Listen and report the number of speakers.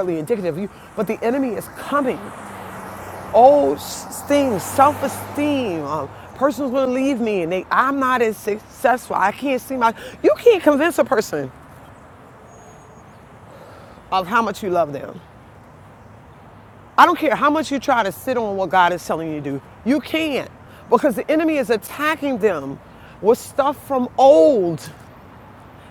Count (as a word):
one